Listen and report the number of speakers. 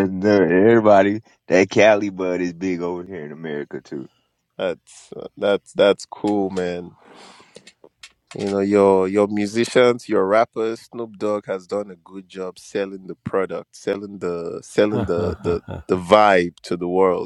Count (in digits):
2